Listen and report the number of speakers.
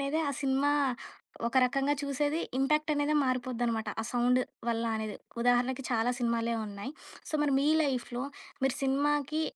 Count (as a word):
one